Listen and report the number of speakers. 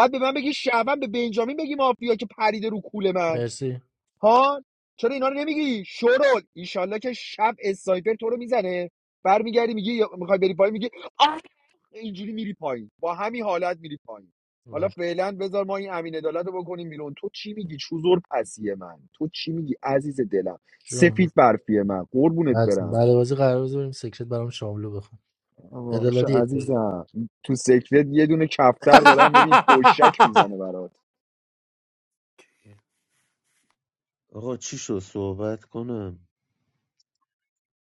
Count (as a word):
three